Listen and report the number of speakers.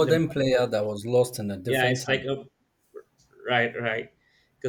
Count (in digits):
2